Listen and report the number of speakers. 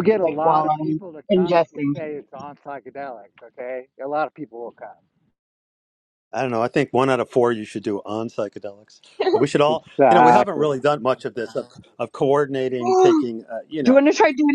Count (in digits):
3